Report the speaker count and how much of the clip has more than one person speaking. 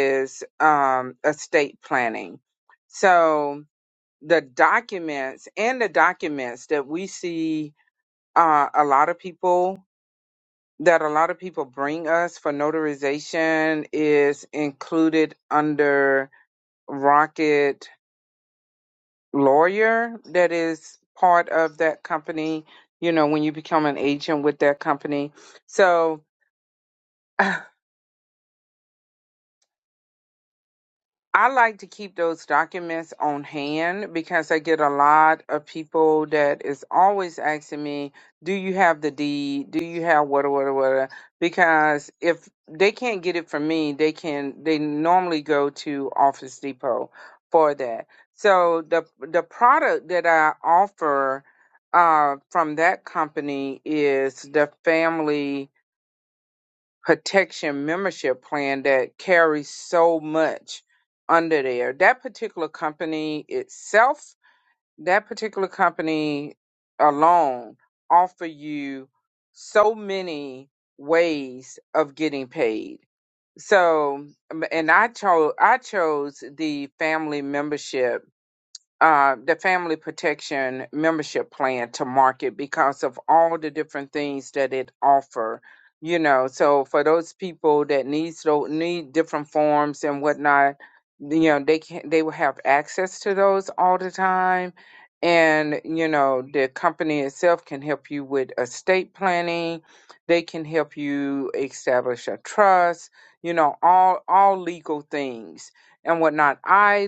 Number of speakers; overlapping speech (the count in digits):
1, no overlap